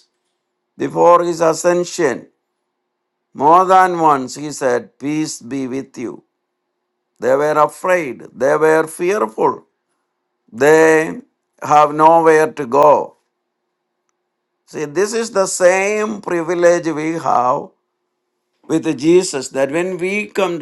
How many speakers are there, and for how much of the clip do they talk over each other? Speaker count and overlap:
1, no overlap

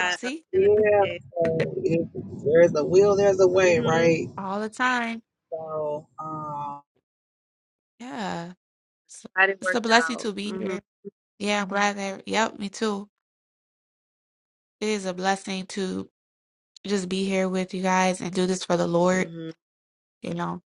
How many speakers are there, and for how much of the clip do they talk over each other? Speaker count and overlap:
3, about 13%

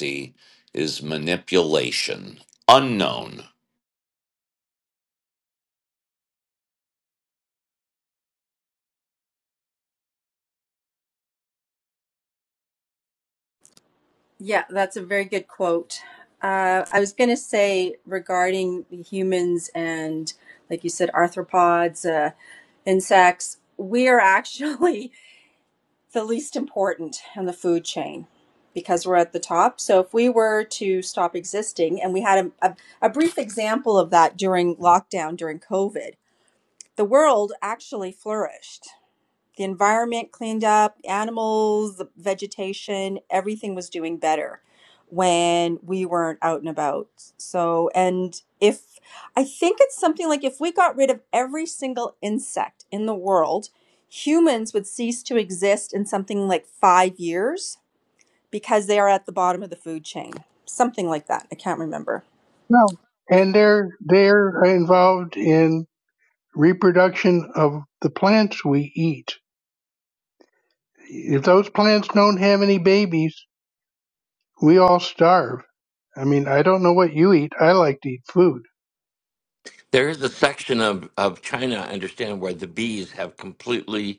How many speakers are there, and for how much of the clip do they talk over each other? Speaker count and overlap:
4, no overlap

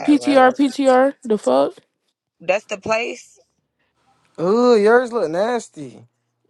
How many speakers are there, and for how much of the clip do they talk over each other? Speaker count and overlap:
3, about 9%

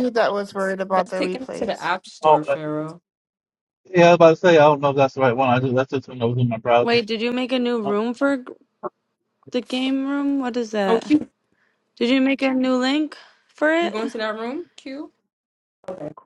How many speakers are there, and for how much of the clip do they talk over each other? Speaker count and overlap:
4, about 12%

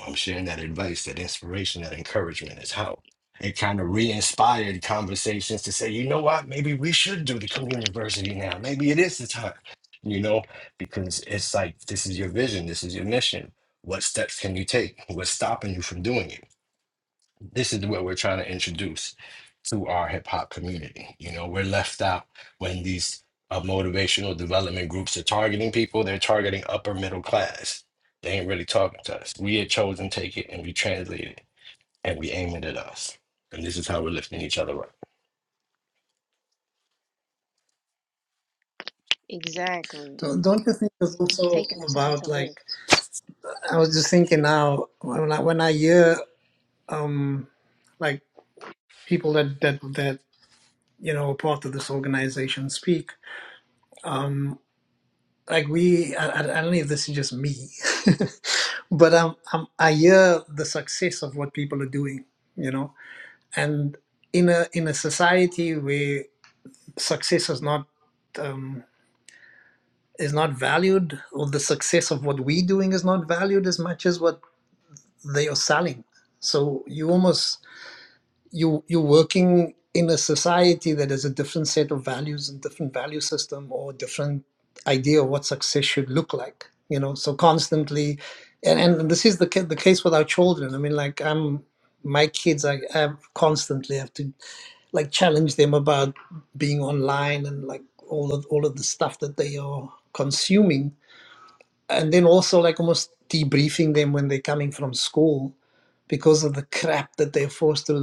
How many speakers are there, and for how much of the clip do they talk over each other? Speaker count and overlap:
3, about 1%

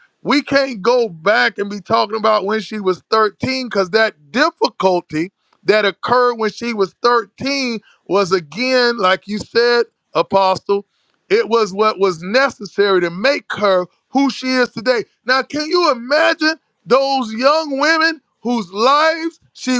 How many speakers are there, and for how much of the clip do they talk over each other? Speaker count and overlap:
1, no overlap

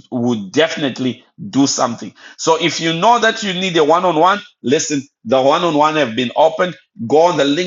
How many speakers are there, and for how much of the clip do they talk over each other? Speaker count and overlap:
1, no overlap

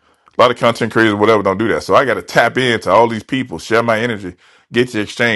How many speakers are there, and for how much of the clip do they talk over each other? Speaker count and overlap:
1, no overlap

